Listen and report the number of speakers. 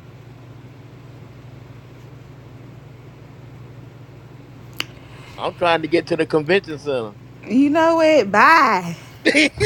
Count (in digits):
2